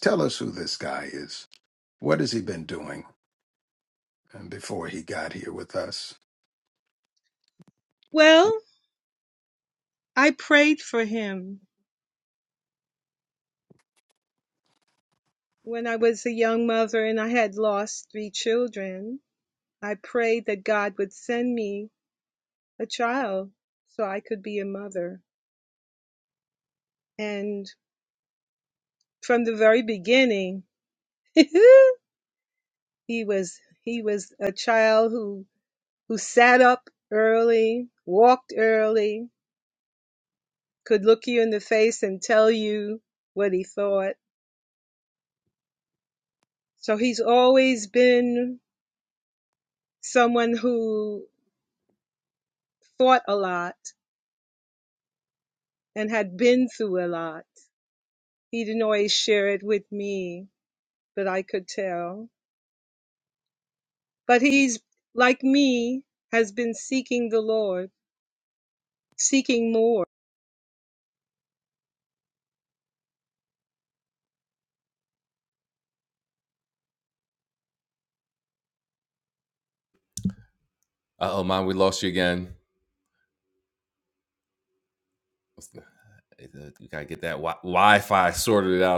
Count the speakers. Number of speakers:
three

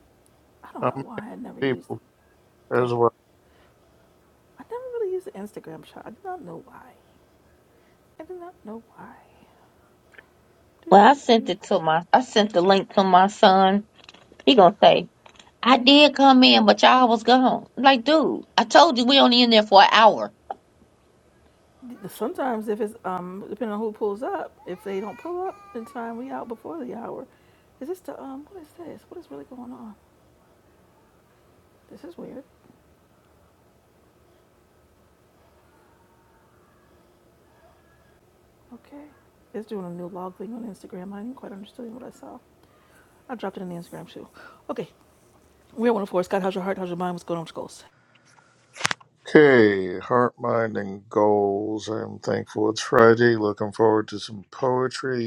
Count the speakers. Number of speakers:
three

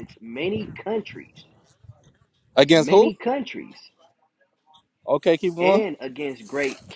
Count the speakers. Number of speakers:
two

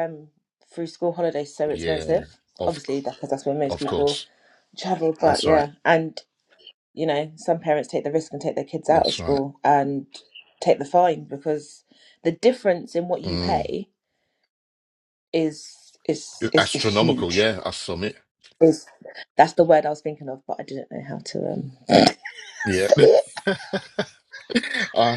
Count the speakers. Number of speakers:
two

